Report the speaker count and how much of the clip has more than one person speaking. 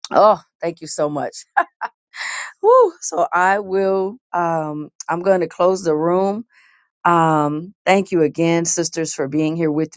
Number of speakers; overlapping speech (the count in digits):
1, no overlap